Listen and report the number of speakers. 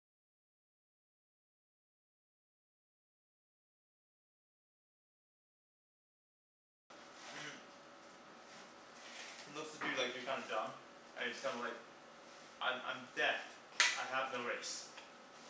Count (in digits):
1